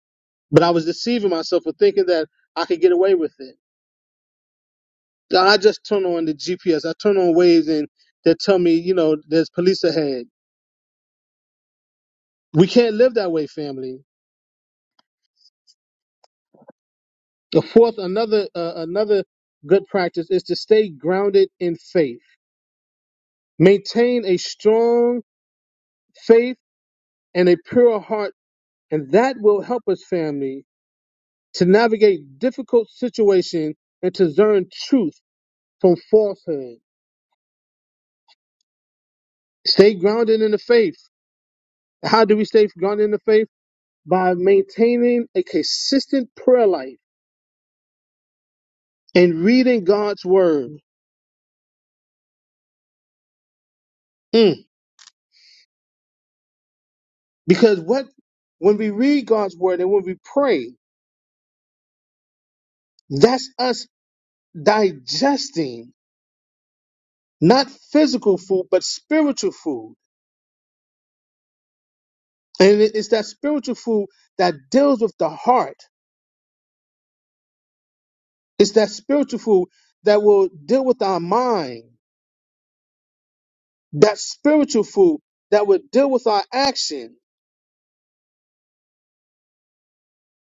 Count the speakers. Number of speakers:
1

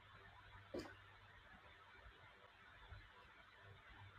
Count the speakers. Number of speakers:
0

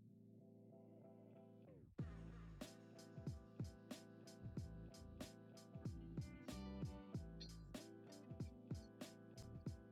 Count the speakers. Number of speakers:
0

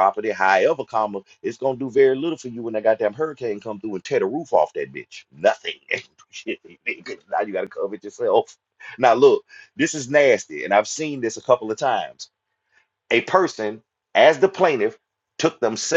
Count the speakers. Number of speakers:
1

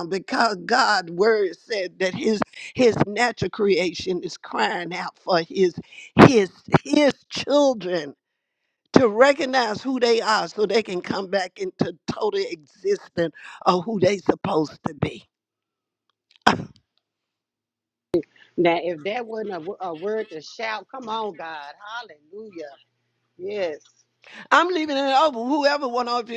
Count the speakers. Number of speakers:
2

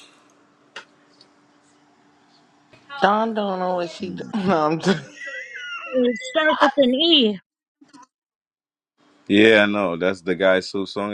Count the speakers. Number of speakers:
3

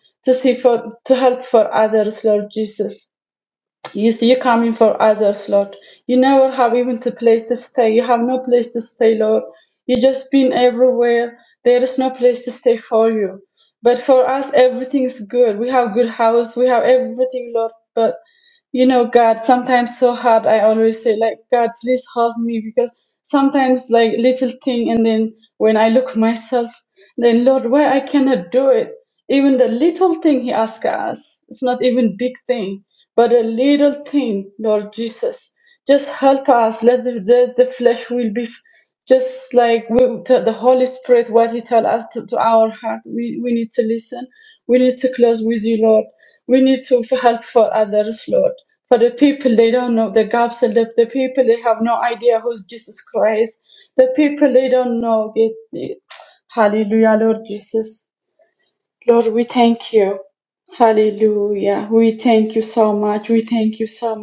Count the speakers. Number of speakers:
1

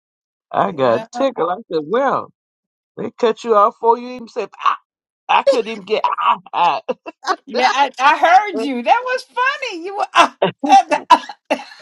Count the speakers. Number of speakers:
2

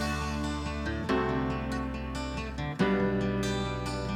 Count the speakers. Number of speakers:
0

